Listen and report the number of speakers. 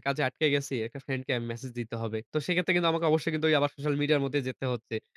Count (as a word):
one